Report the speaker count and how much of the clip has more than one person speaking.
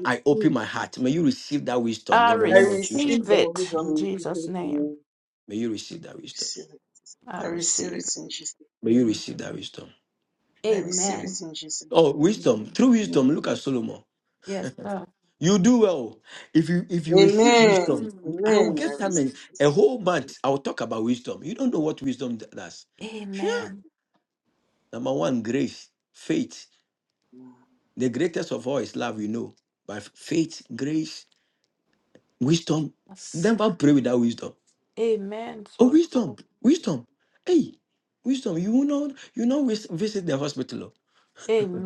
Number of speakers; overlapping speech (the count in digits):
3, about 22%